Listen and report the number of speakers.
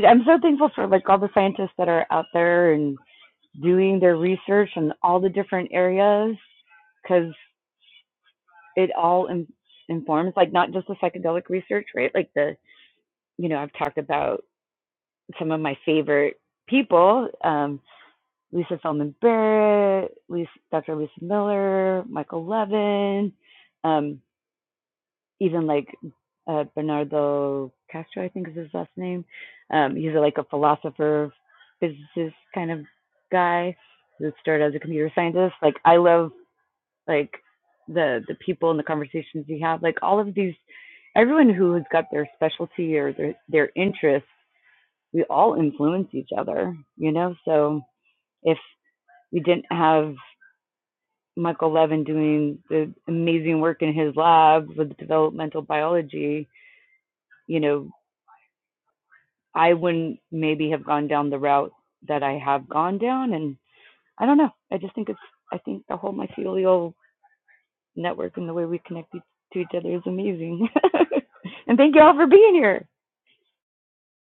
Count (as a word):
one